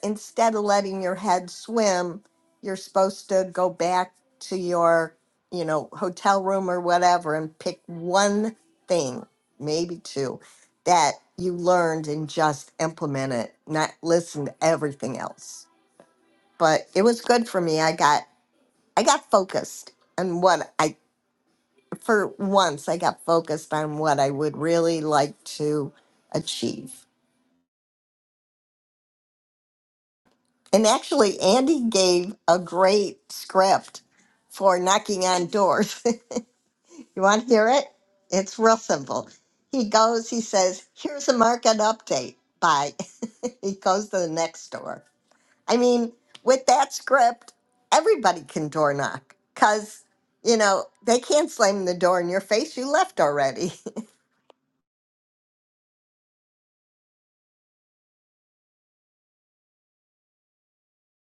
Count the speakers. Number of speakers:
1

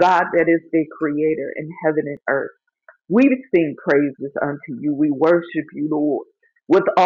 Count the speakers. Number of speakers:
1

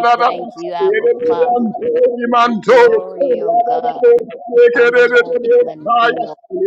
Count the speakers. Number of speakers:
2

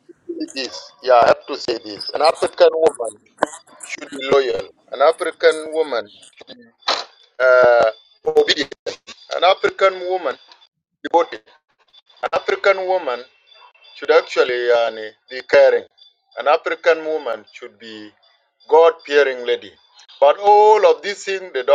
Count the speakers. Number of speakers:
1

